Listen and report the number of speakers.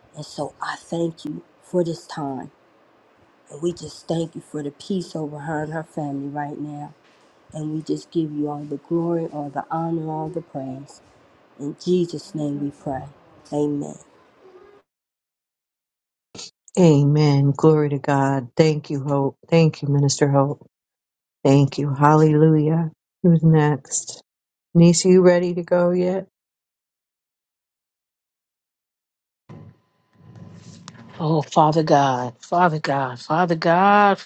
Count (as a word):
three